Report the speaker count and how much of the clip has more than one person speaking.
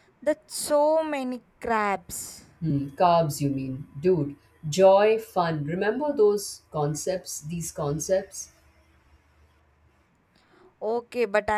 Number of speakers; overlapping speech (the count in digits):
2, no overlap